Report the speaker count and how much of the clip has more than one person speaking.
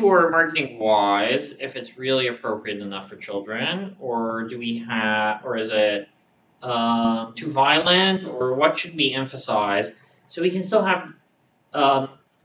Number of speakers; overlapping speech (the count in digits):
1, no overlap